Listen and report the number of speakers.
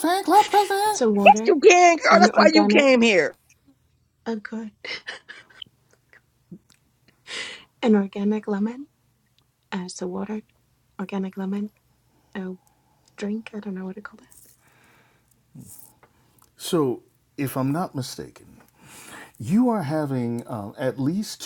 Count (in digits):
3